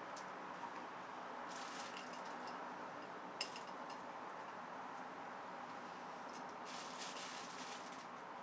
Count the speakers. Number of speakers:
0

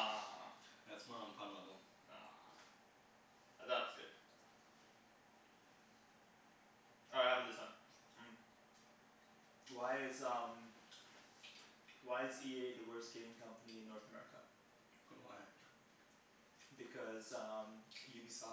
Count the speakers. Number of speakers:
2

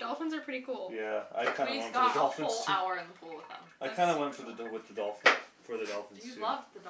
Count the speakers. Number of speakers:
3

